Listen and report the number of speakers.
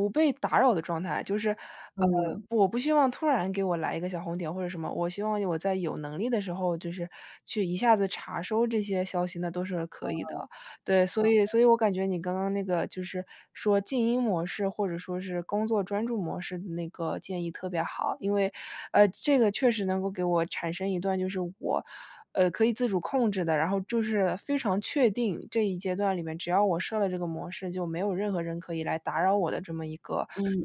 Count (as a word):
two